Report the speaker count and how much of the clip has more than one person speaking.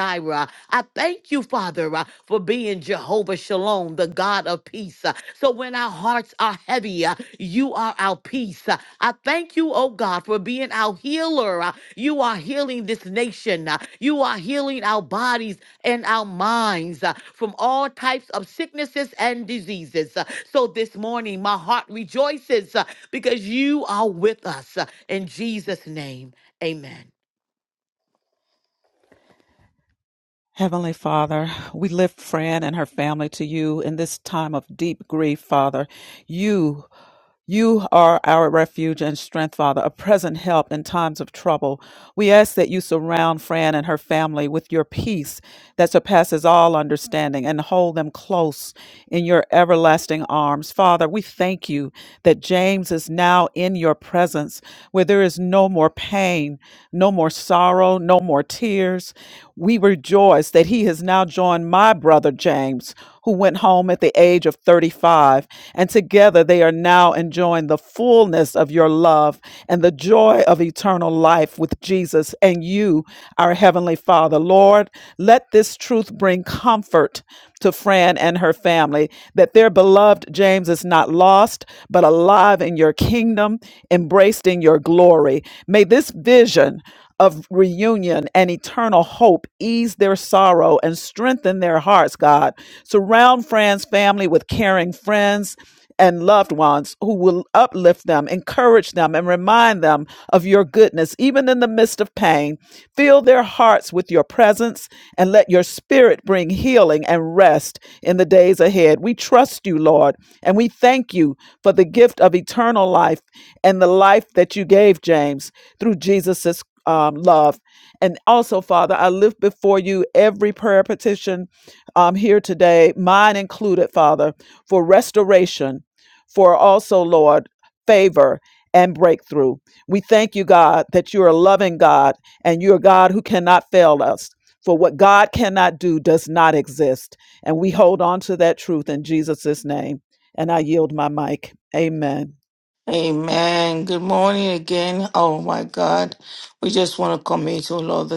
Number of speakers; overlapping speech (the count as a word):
three, no overlap